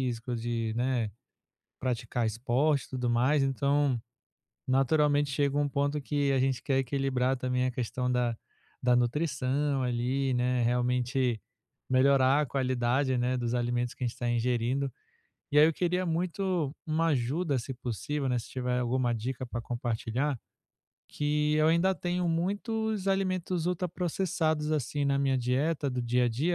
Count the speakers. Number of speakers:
one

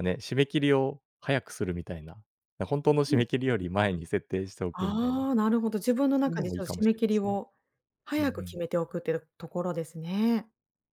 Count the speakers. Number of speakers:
two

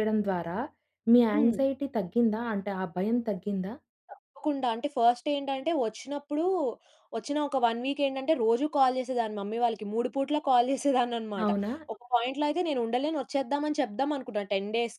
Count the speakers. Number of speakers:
two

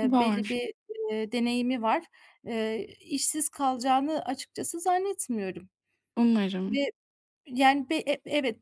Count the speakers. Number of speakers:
two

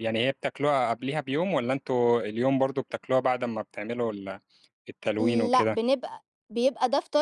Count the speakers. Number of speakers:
two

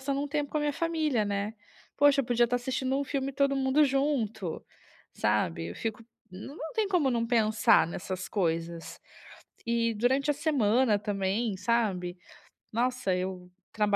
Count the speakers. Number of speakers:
one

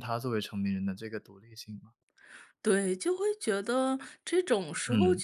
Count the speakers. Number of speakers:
two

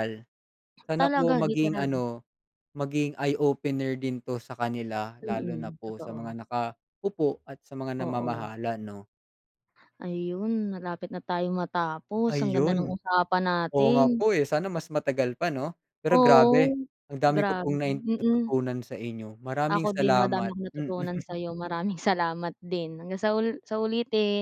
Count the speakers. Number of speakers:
two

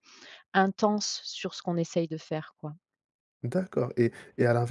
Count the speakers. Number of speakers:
two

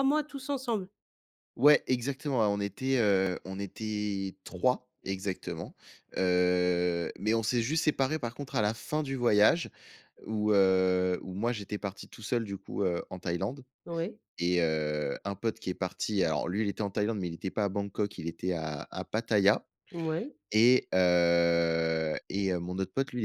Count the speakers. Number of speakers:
two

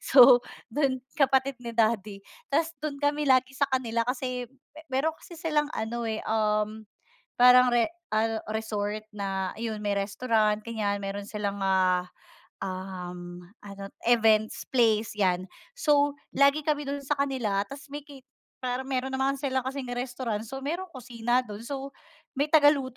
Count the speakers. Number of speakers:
one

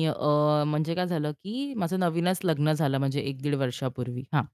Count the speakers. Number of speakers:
one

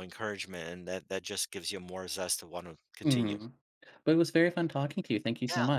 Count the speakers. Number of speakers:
two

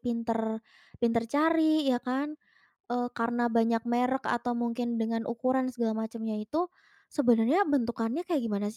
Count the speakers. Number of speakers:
one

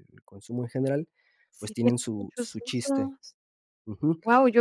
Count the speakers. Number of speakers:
two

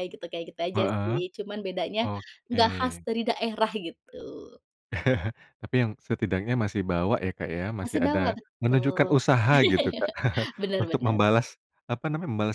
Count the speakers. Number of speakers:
two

